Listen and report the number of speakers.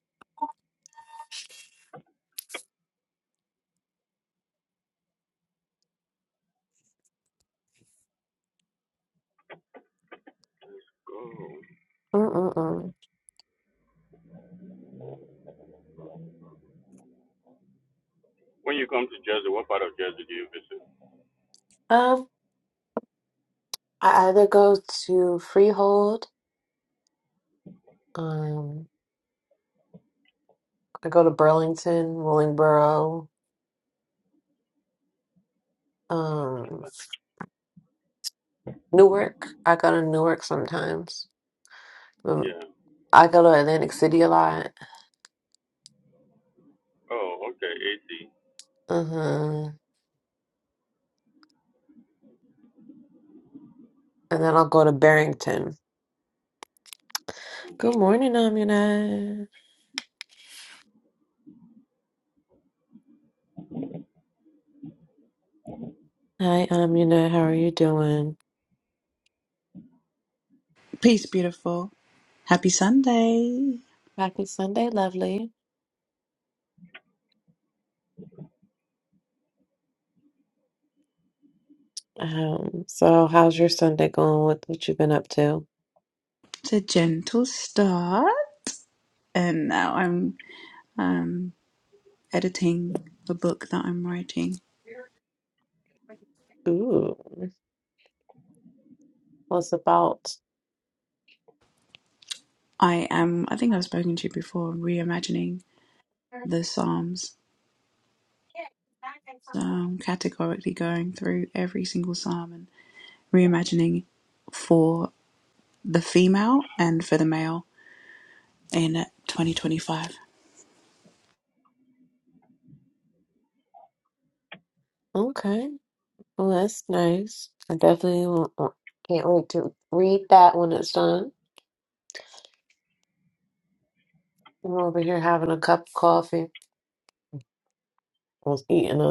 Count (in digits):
3